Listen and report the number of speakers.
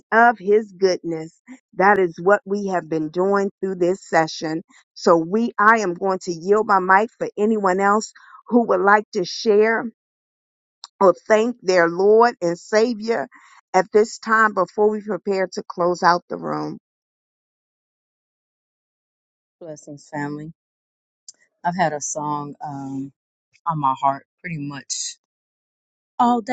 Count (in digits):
2